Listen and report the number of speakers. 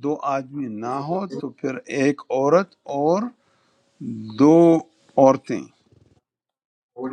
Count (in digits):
1